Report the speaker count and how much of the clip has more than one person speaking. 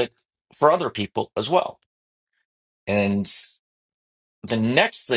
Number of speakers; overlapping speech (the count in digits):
1, no overlap